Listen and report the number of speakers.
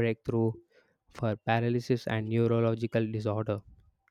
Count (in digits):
1